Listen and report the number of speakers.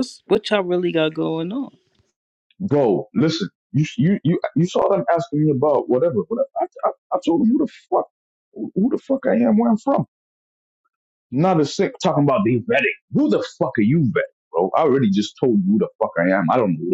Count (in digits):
2